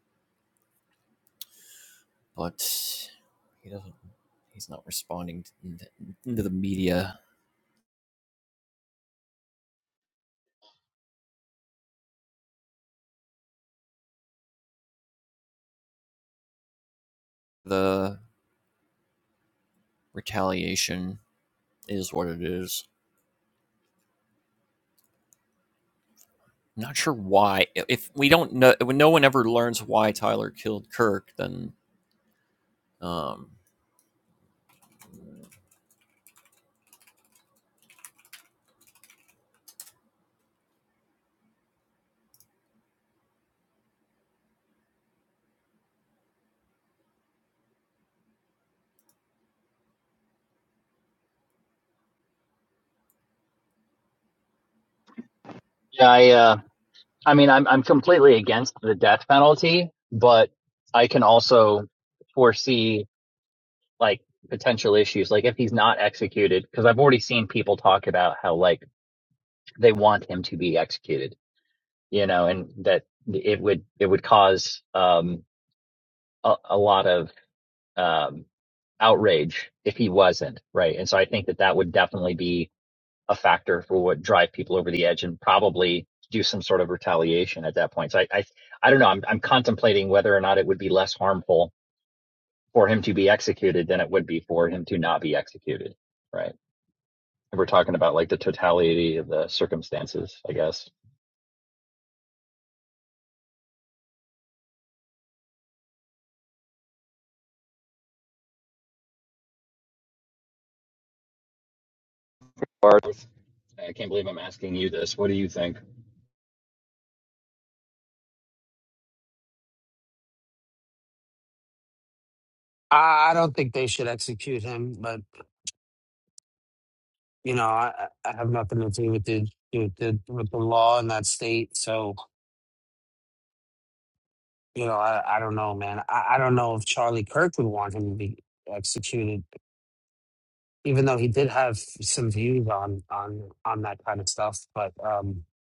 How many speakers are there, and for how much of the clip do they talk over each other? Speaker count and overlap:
3, no overlap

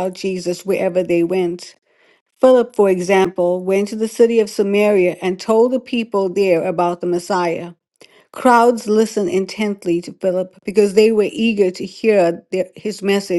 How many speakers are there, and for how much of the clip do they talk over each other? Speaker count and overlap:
1, no overlap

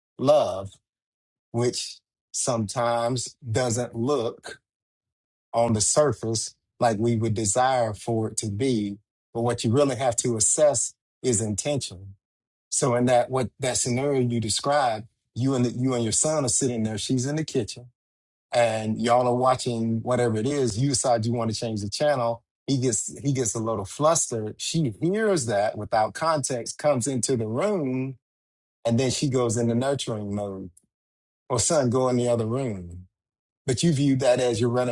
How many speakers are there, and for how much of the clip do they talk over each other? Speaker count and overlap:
1, no overlap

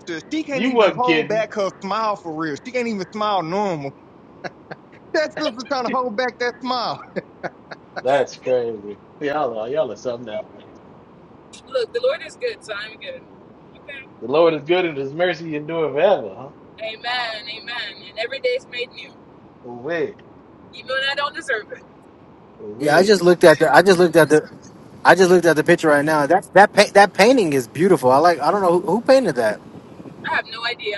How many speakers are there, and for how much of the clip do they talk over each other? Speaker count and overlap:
4, about 4%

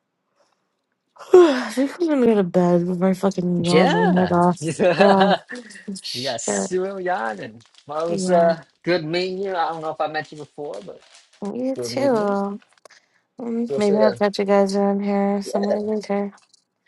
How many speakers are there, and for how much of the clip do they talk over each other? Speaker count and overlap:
2, about 22%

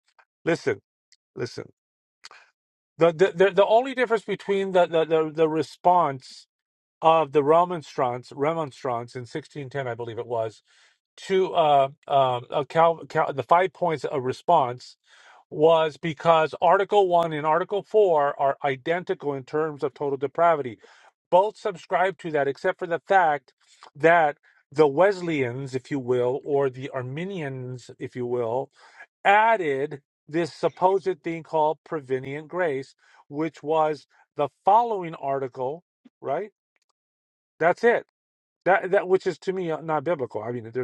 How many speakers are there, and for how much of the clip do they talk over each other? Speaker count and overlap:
1, no overlap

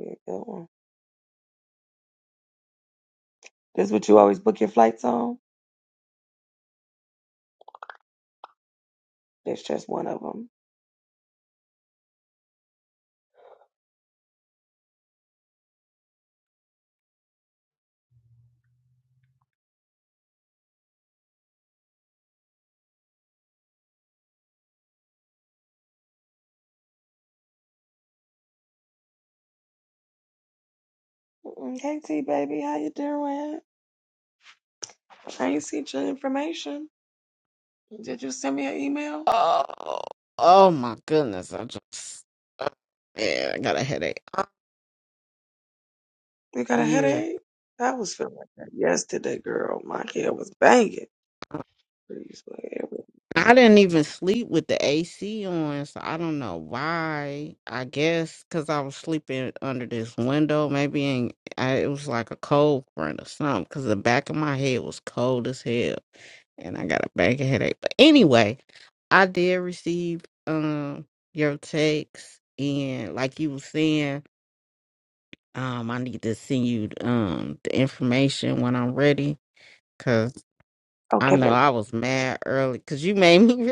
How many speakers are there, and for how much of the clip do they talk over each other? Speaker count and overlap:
2, about 1%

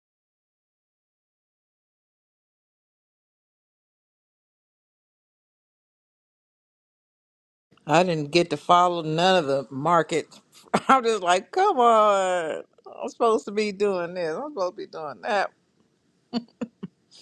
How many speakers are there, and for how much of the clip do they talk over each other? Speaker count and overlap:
1, no overlap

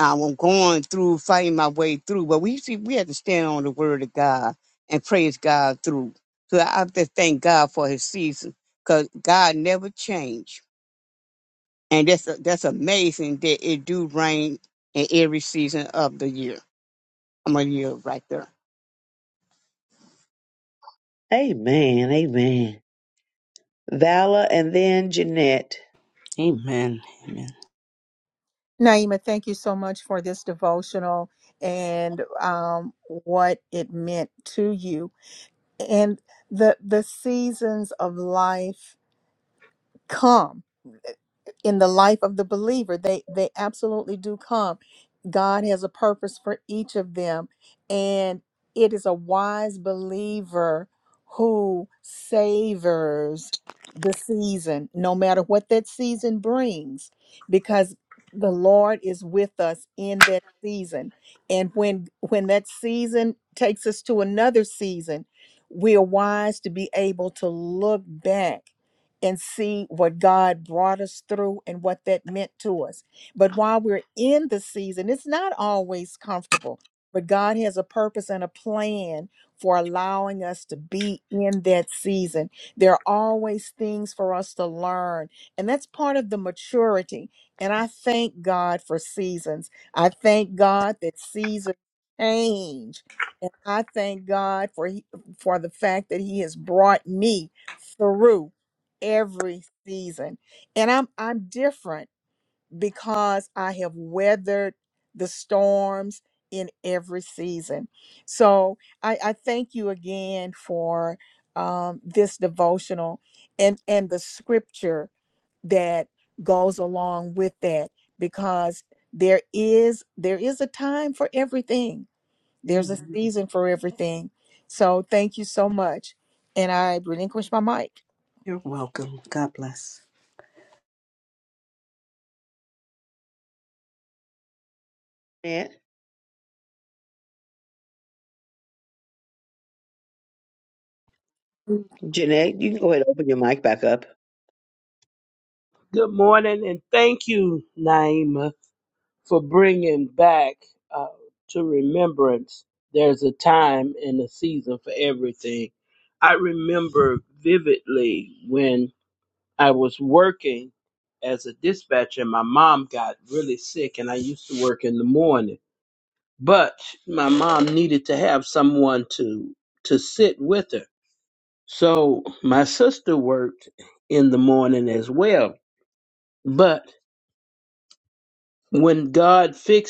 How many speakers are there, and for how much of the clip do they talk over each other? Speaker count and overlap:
5, under 1%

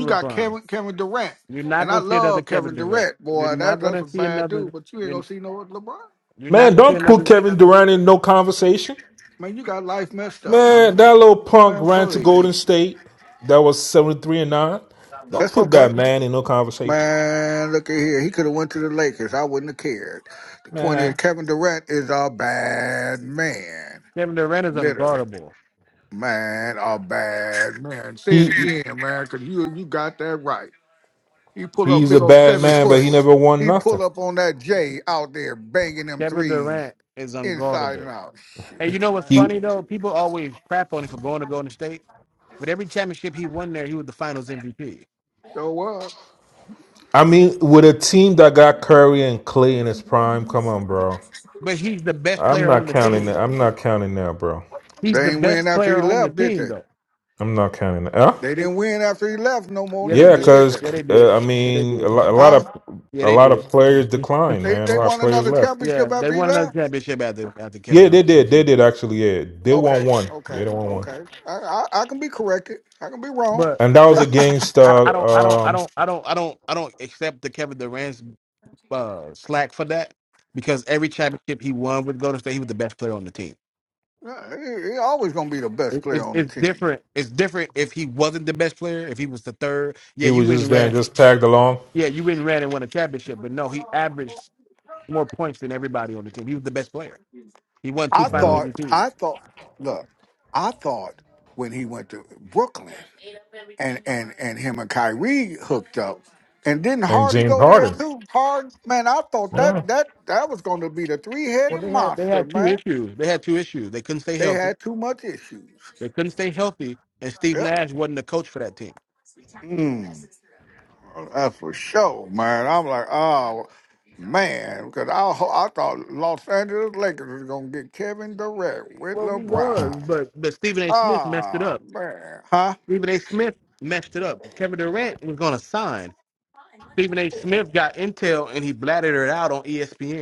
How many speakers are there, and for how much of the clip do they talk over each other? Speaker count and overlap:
3, about 21%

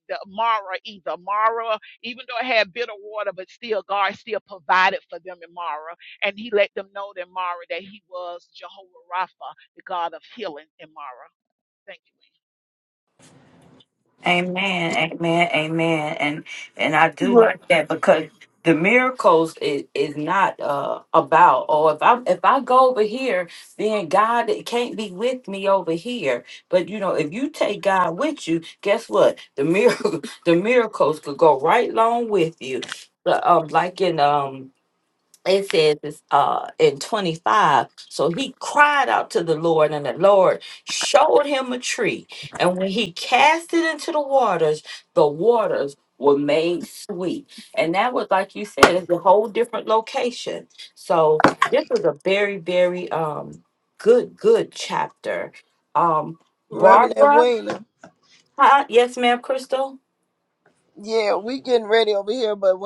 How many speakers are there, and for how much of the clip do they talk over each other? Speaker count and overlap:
3, about 2%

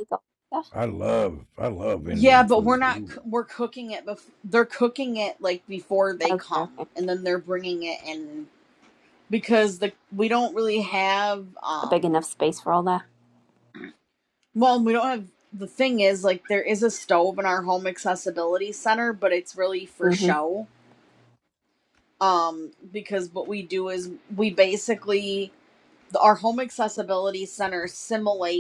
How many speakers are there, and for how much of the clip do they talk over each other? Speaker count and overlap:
3, about 9%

